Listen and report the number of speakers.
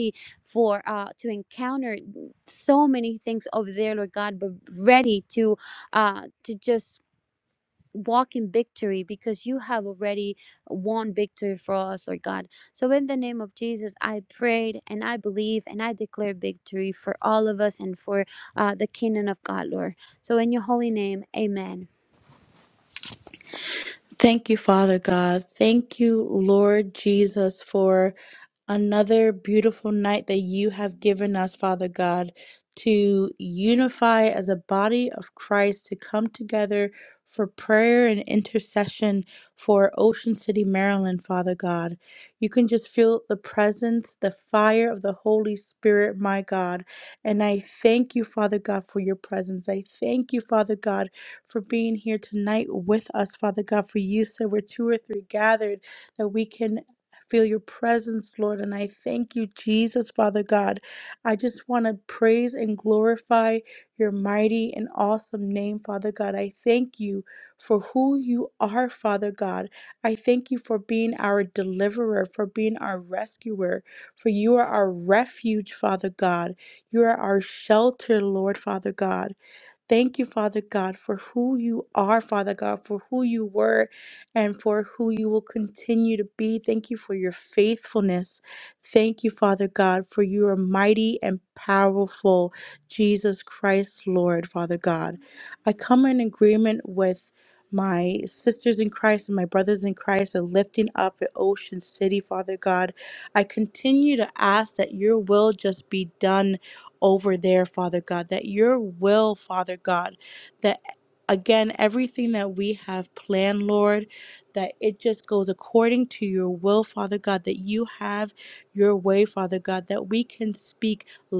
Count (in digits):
2